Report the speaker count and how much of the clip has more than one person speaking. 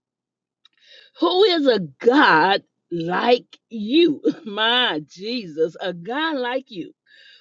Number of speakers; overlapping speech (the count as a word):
one, no overlap